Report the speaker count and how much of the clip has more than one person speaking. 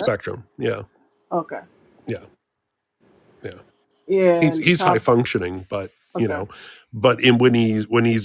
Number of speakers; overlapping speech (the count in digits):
2, about 12%